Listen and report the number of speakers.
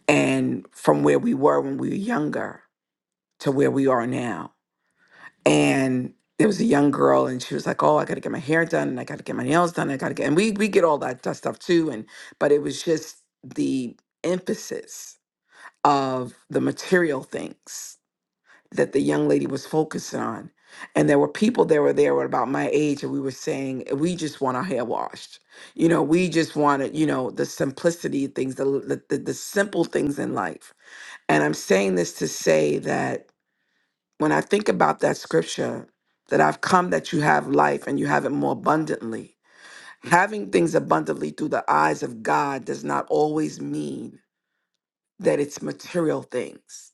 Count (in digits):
1